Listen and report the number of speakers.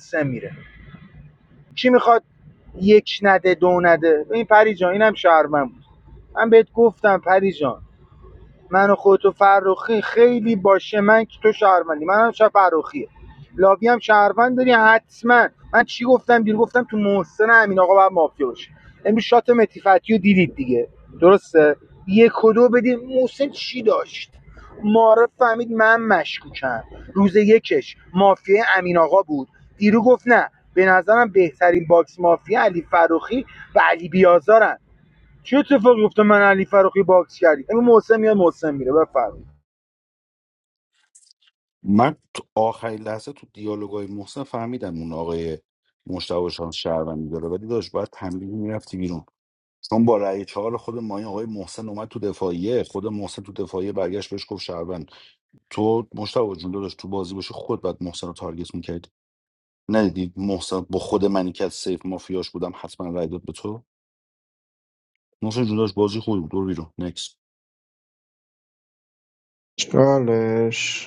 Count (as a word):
three